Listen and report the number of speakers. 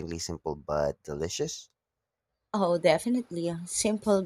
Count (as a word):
two